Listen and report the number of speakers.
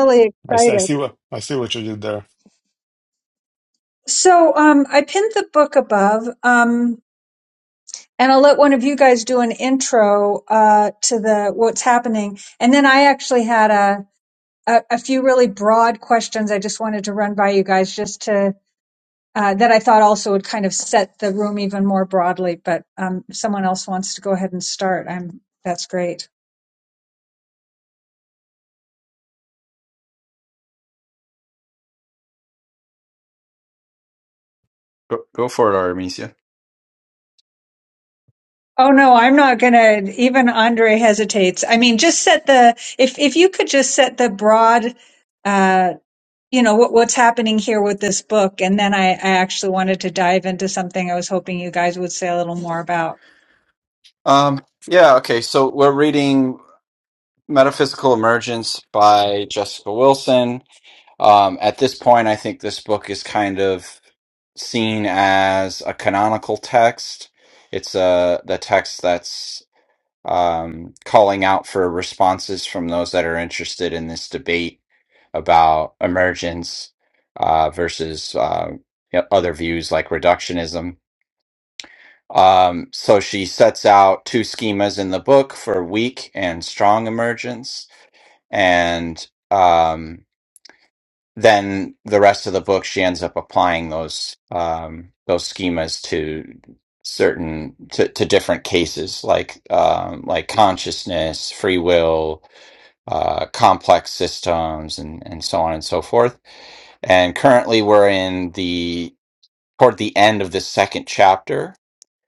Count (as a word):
three